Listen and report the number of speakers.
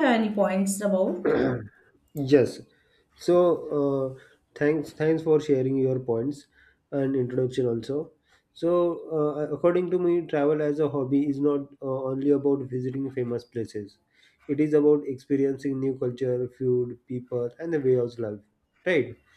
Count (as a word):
two